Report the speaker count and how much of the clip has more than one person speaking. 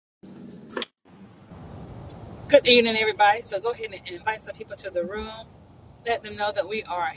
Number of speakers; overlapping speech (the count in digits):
1, no overlap